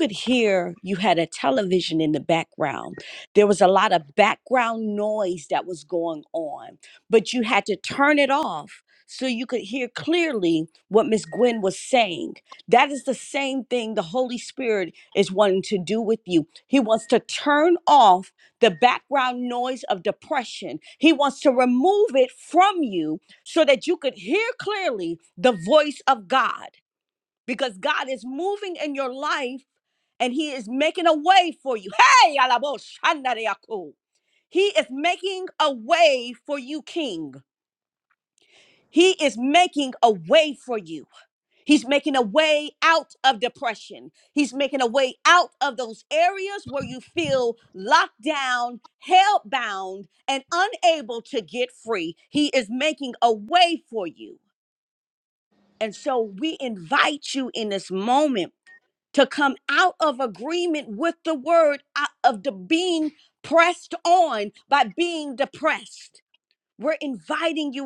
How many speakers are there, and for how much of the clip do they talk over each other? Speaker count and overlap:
one, no overlap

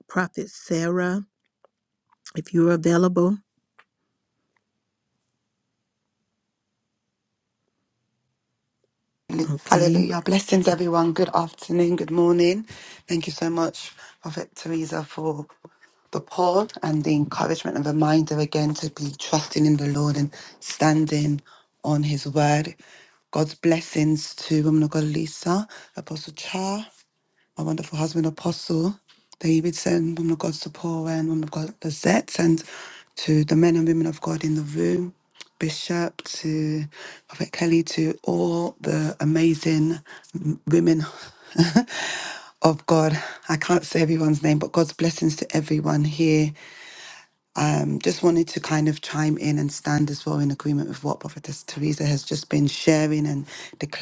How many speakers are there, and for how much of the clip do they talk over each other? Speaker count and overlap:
two, about 1%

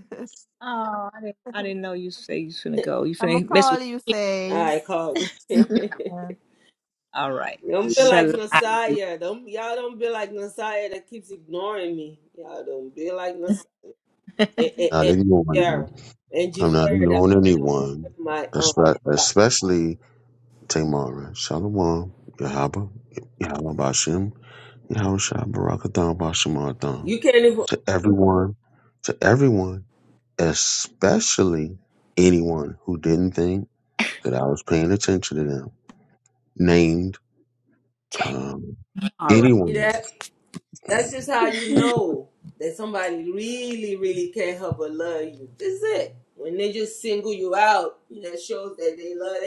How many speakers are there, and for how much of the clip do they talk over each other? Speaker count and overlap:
four, about 8%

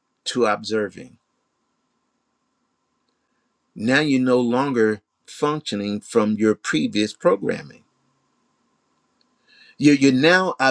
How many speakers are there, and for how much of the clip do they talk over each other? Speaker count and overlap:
one, no overlap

